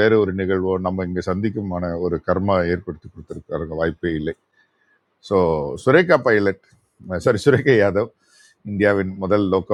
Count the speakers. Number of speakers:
1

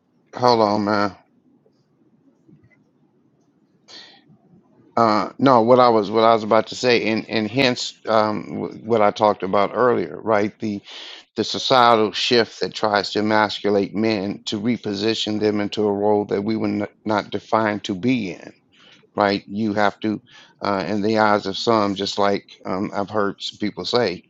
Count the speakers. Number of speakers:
1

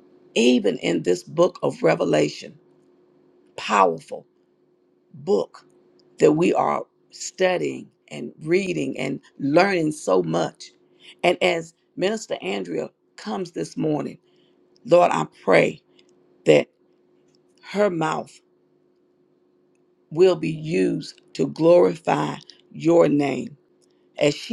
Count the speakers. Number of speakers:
1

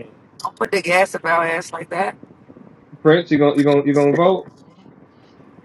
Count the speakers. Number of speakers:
2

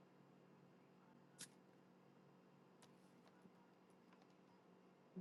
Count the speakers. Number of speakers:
0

